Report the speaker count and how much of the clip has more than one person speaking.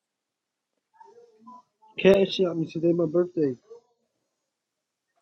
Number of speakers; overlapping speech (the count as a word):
one, no overlap